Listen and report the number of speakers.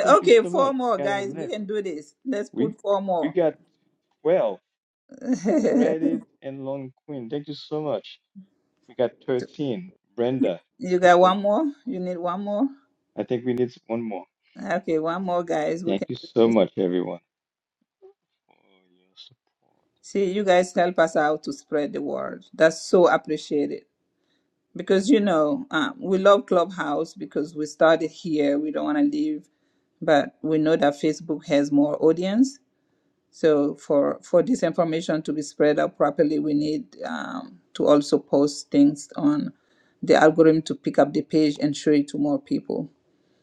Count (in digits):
2